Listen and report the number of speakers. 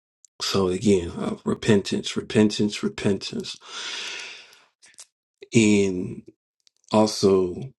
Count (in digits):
1